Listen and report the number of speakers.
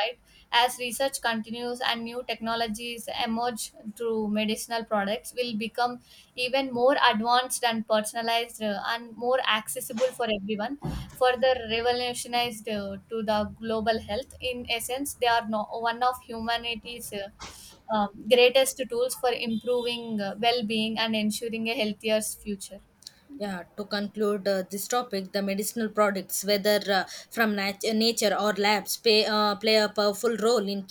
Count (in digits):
2